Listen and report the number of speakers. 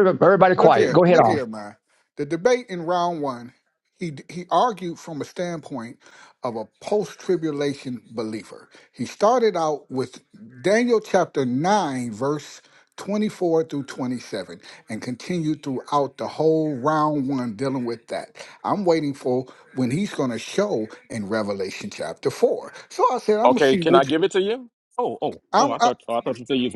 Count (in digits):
3